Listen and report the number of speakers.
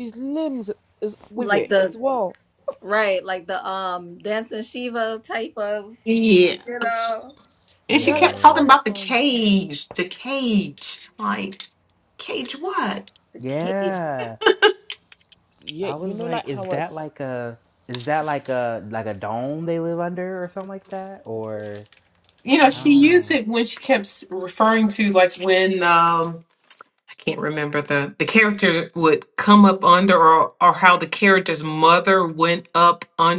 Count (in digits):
4